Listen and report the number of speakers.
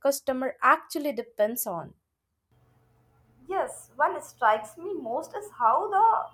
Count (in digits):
2